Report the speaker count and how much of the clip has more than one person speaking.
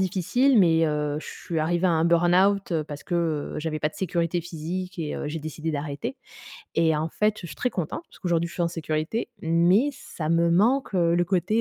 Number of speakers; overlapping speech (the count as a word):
one, no overlap